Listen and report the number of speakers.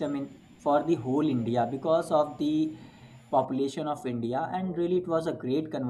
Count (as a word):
one